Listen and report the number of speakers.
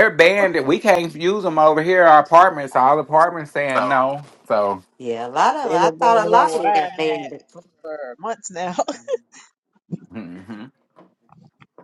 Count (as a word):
three